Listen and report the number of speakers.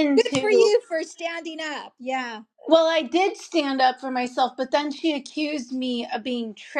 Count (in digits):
2